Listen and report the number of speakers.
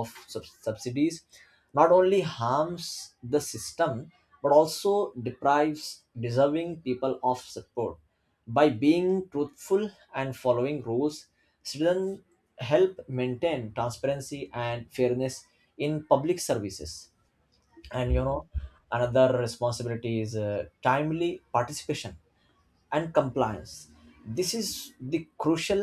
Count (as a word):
one